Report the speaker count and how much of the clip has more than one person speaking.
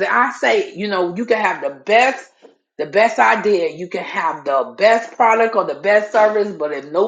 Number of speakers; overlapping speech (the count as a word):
one, no overlap